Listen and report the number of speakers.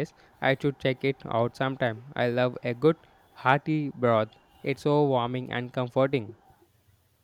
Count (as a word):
one